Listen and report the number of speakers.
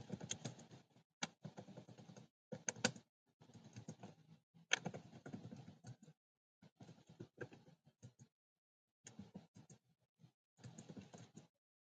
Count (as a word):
zero